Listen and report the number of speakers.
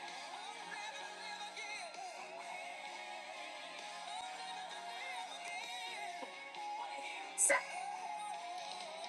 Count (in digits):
0